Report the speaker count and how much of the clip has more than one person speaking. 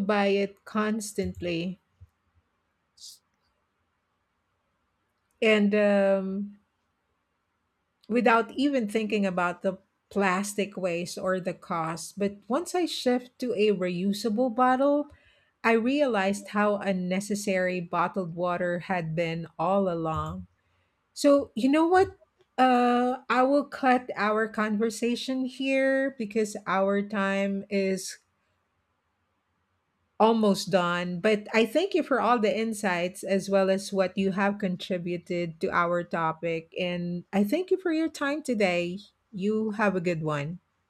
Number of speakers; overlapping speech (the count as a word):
one, no overlap